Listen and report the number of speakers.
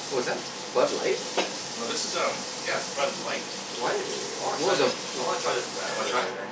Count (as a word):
three